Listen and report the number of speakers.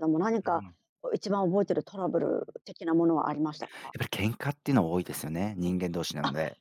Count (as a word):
two